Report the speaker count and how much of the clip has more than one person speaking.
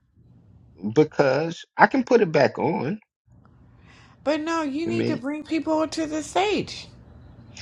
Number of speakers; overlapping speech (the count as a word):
two, about 4%